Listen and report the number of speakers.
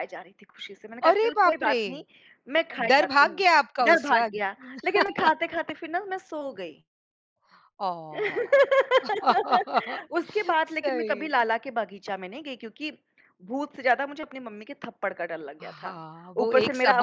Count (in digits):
2